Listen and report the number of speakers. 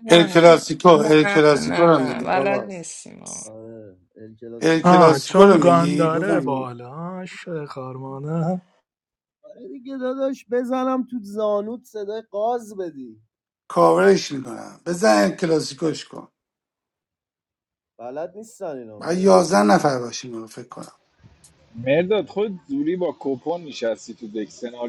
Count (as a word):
five